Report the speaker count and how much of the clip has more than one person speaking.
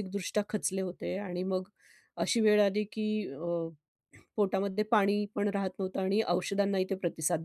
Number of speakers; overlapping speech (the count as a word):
one, no overlap